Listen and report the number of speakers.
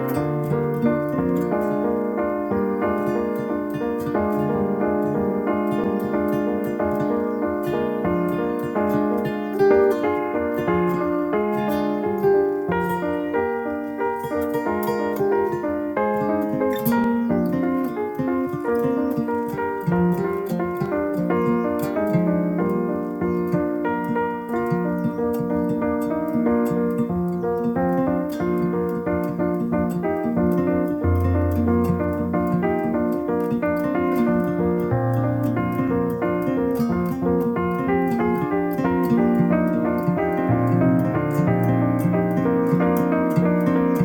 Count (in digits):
0